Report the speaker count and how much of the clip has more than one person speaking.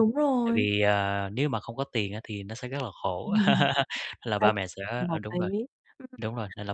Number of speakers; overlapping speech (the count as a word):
two, about 15%